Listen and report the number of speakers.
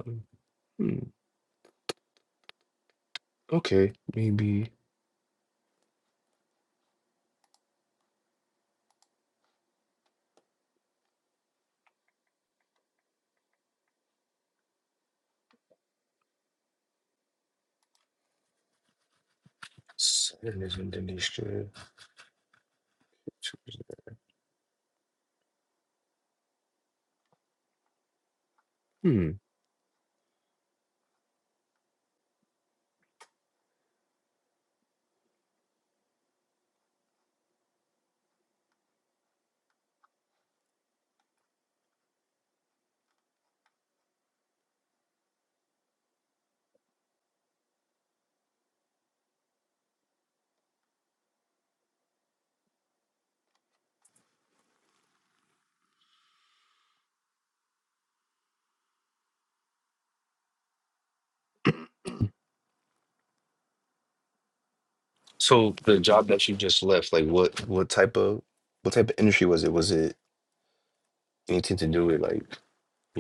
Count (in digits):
1